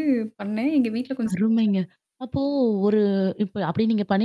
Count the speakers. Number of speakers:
2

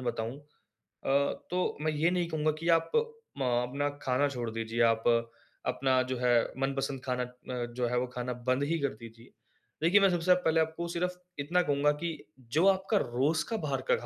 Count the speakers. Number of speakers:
1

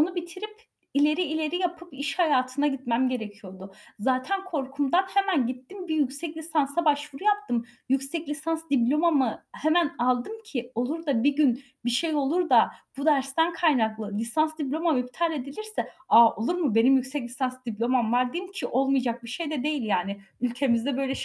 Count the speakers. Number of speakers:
1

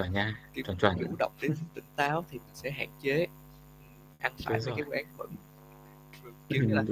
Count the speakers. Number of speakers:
2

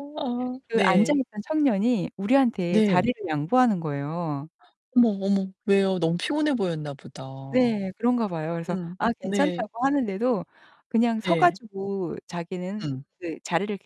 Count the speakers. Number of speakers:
2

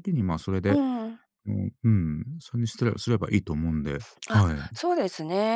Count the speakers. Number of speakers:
2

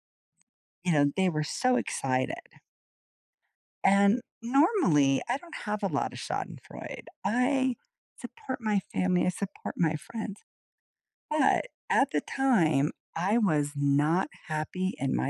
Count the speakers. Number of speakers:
1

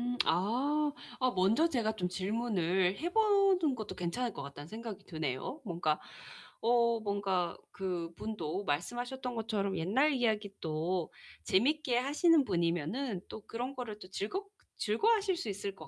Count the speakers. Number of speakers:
1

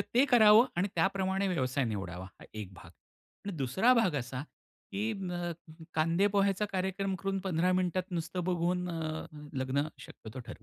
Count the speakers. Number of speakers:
1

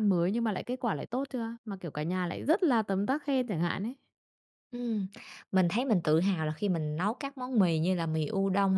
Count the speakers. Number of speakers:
2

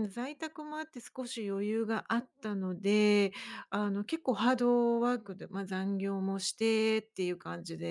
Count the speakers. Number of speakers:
1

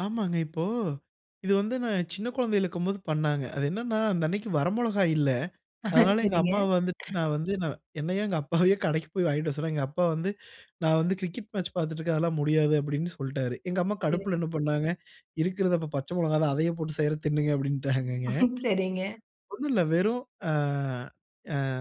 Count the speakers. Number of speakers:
2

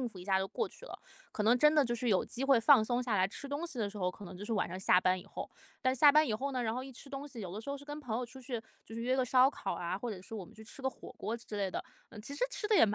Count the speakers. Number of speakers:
1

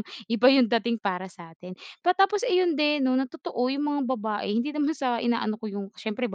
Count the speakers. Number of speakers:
1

